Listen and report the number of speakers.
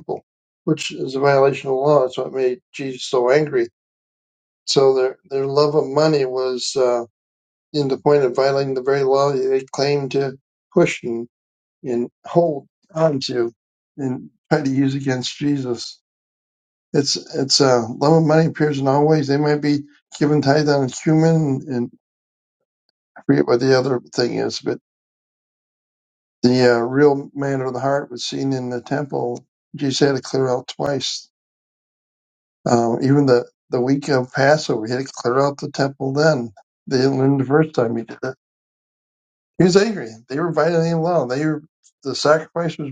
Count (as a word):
one